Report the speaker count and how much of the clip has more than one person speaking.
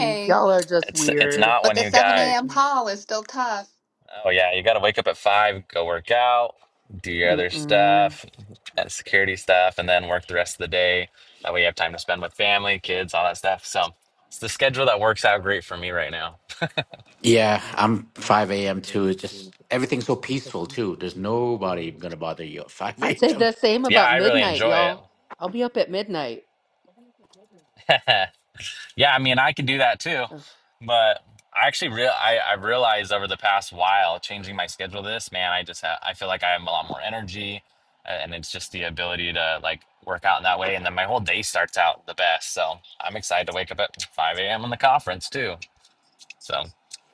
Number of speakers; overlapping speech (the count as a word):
four, about 9%